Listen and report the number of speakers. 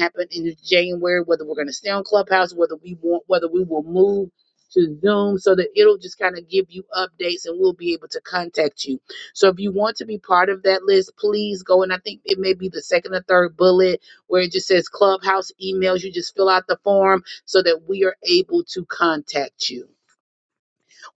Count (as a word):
one